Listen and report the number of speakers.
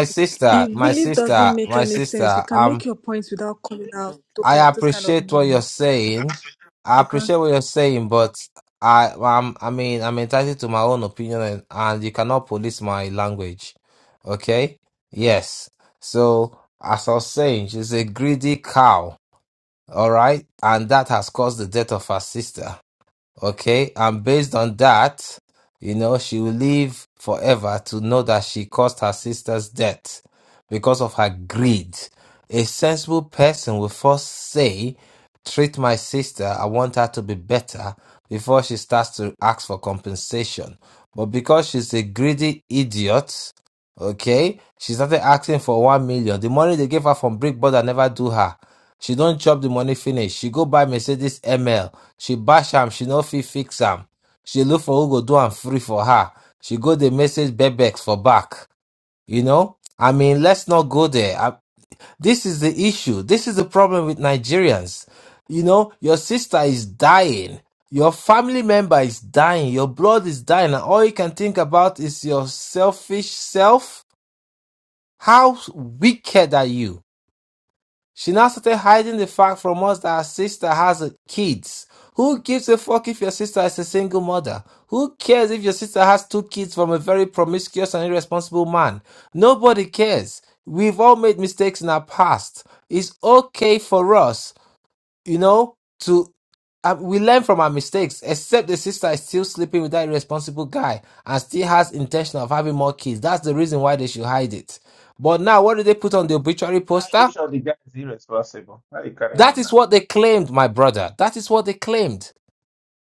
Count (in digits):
3